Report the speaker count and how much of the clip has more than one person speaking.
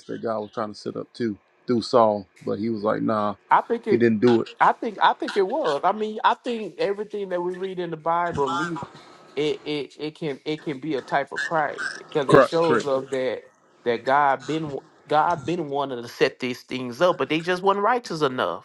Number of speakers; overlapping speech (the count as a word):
two, about 5%